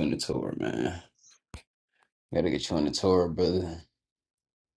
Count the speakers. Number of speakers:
1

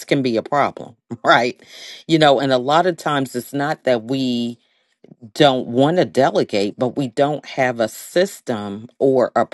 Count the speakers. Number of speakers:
1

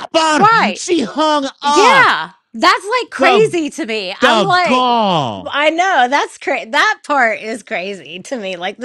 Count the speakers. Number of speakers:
2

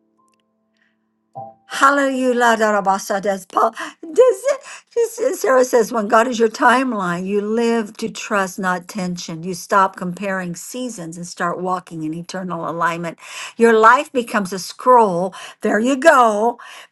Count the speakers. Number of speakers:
1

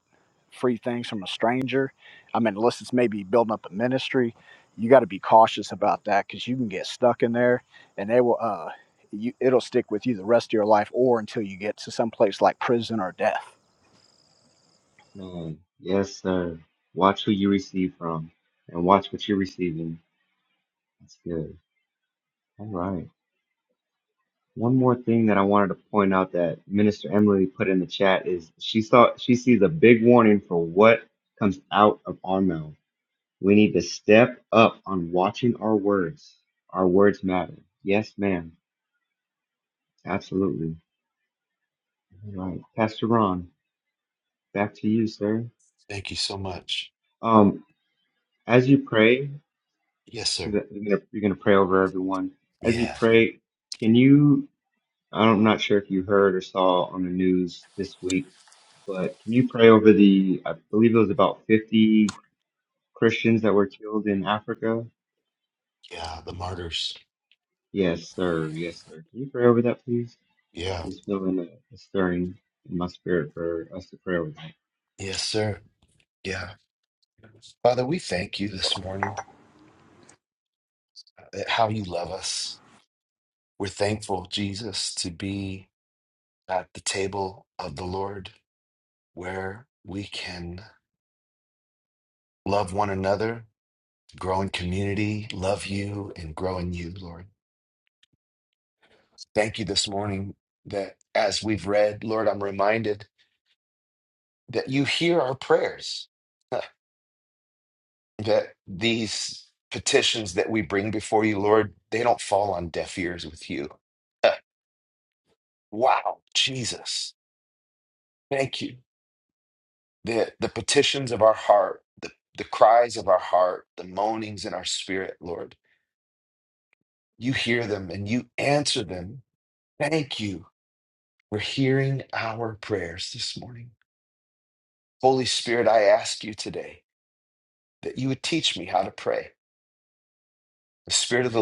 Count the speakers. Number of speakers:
3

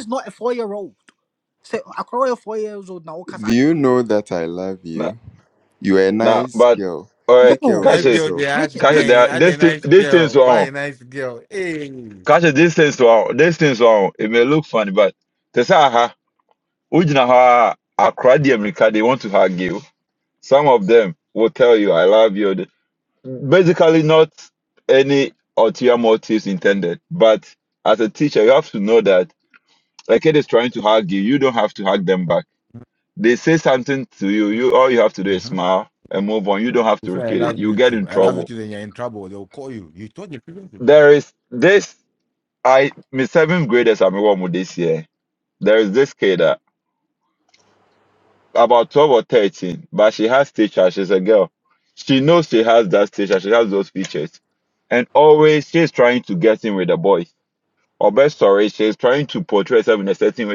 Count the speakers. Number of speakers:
4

